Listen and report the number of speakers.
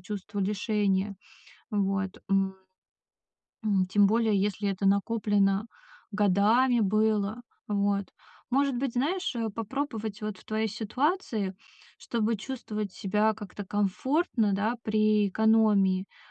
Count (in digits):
1